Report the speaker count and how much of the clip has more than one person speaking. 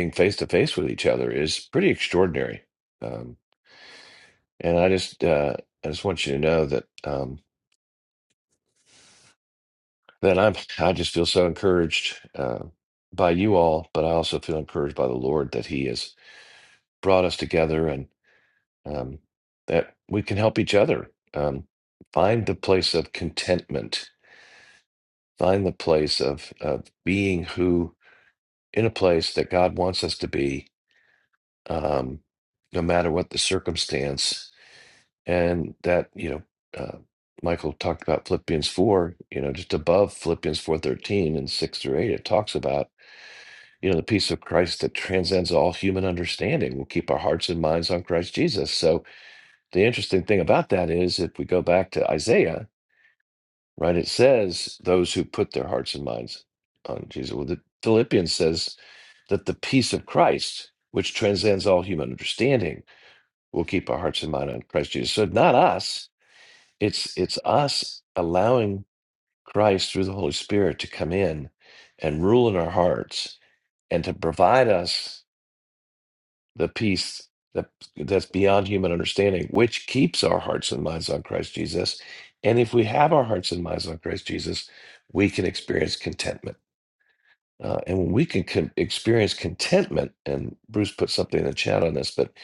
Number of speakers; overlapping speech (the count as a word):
one, no overlap